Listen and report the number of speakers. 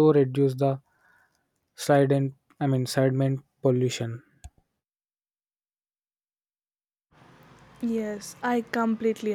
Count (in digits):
2